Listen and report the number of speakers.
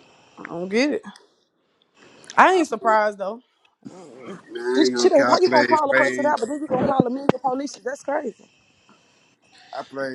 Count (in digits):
3